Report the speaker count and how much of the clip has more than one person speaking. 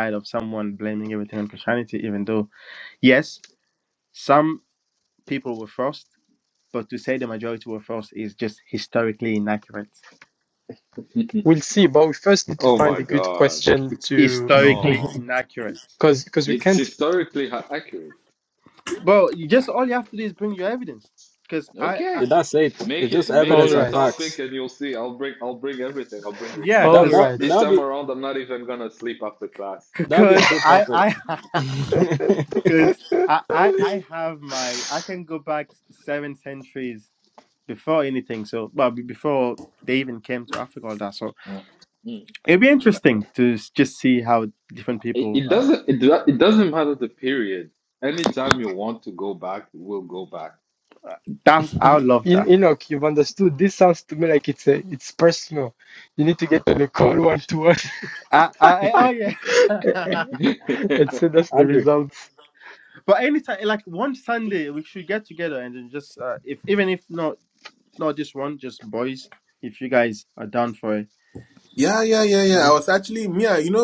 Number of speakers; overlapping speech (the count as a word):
five, about 12%